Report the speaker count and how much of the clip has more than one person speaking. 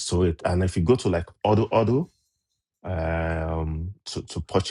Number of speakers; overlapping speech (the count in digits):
1, no overlap